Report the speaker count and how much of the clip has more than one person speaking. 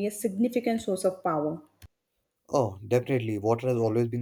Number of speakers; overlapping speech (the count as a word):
two, no overlap